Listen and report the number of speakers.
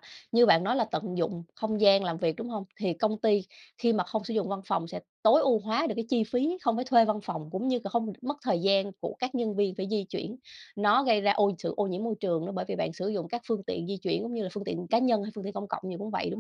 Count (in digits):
1